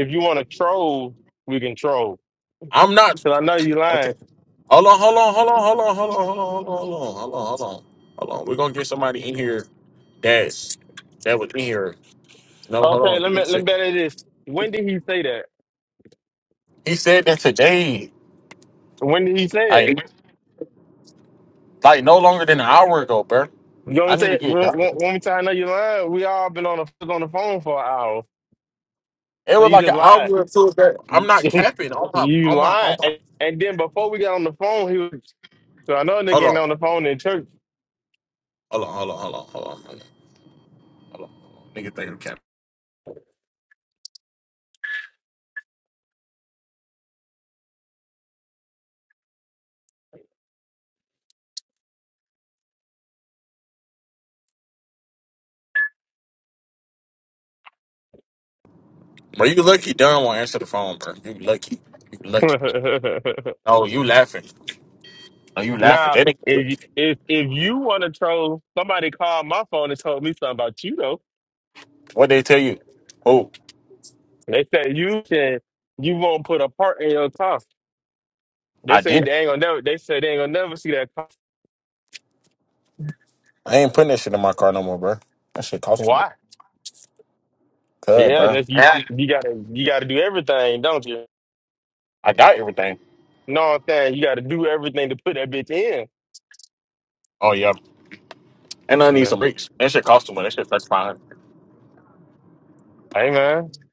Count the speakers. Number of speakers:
two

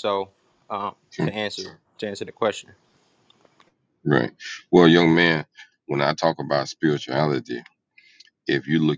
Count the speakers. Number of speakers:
two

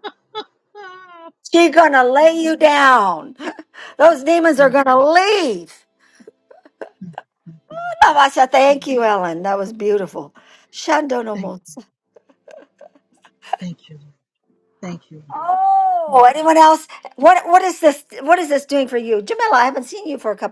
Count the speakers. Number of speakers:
two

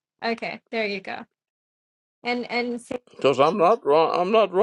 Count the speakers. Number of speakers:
two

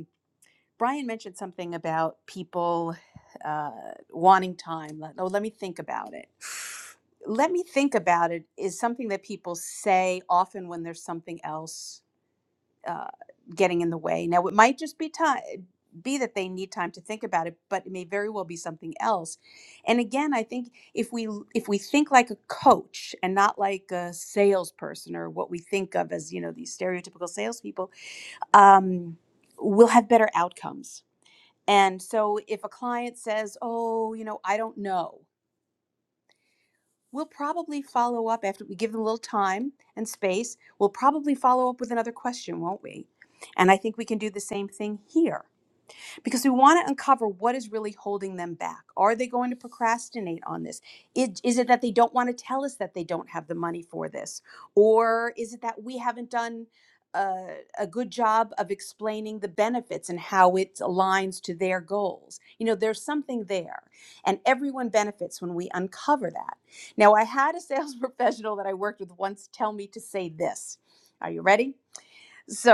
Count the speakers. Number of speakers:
one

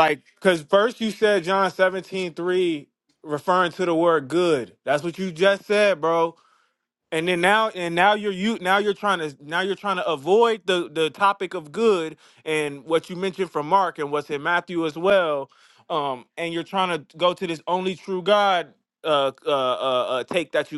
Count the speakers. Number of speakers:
one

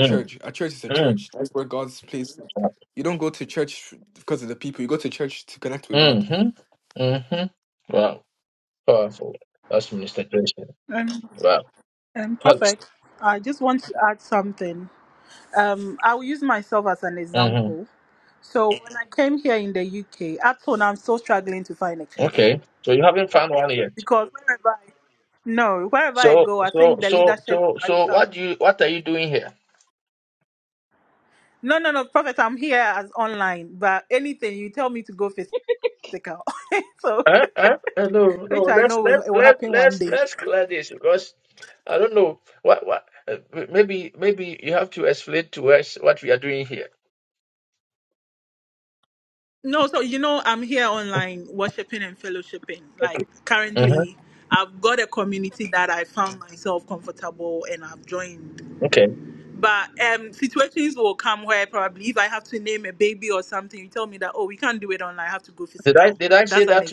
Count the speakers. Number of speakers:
three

